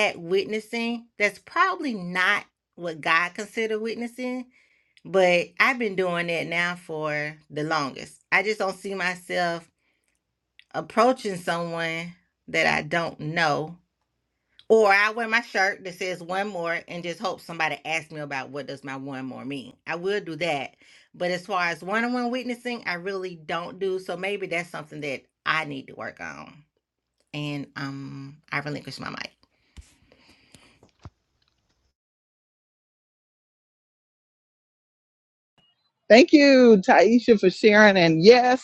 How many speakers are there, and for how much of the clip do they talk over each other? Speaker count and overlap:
two, no overlap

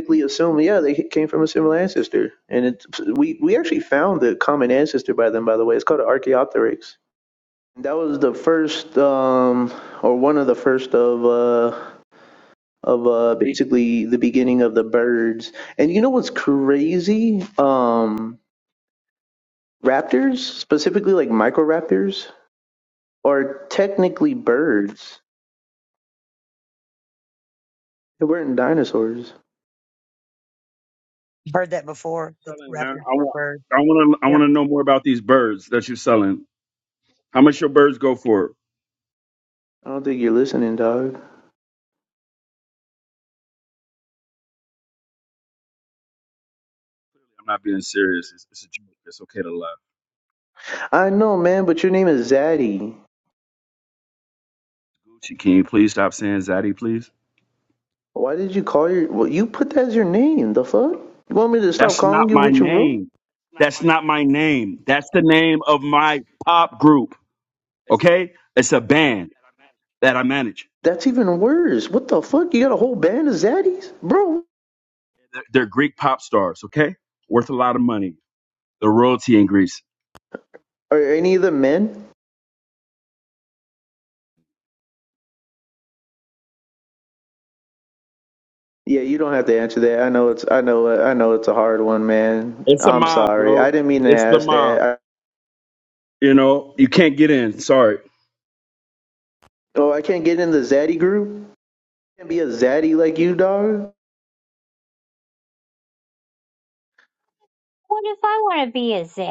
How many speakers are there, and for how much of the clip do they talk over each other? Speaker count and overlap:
four, about 4%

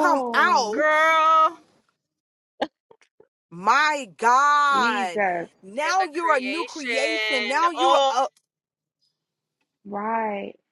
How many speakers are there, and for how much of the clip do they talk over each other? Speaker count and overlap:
three, about 29%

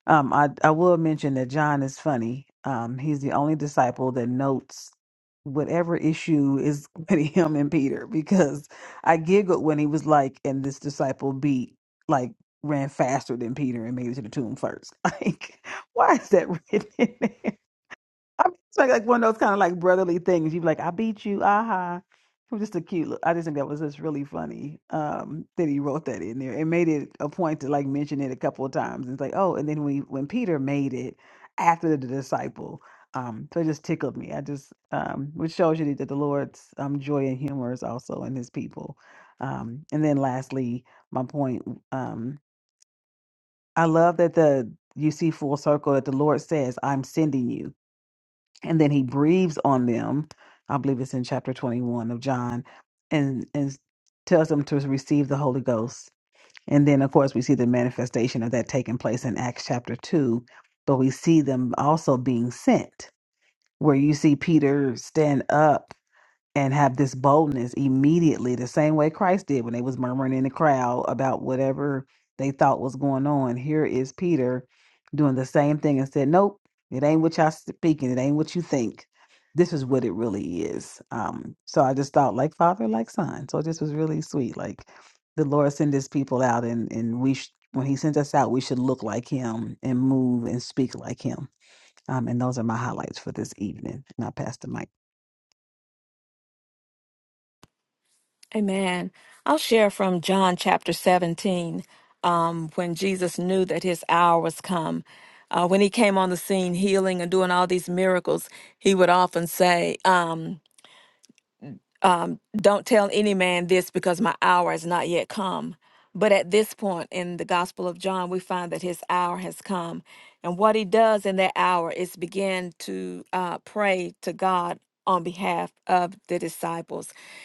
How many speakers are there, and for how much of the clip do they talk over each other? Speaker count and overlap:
two, no overlap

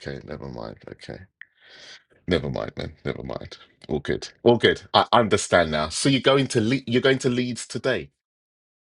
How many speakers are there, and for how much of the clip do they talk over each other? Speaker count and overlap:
one, no overlap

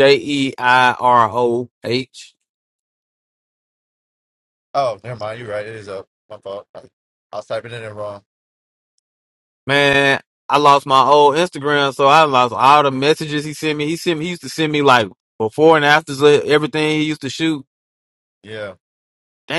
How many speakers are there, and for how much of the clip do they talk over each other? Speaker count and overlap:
two, no overlap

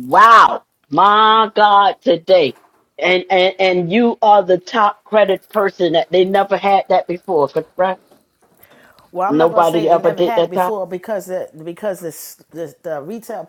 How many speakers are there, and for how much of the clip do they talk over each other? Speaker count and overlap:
two, about 11%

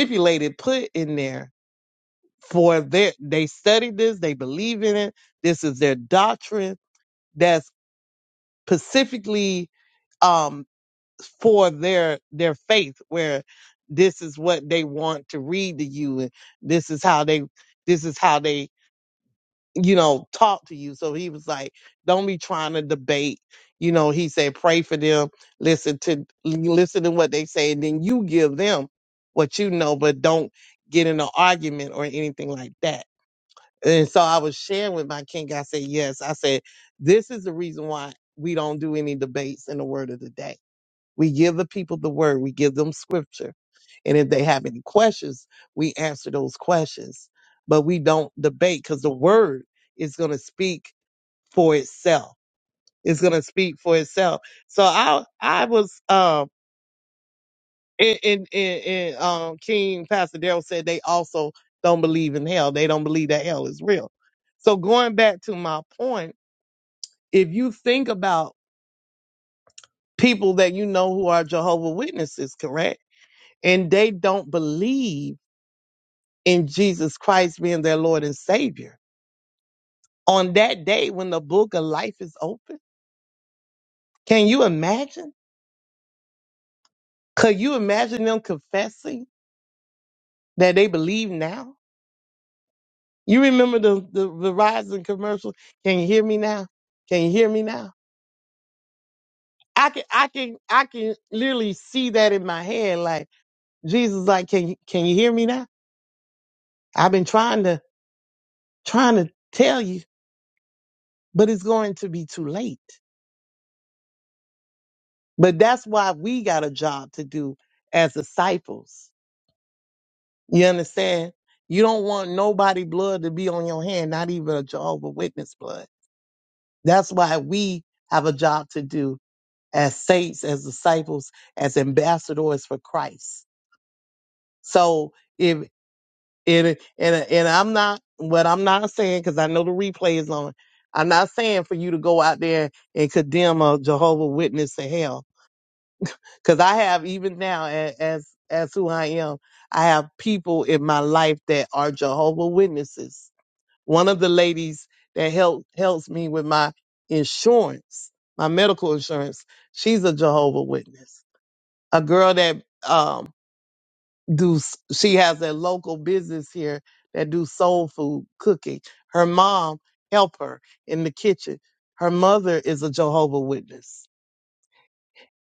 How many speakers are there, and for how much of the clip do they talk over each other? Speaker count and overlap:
one, no overlap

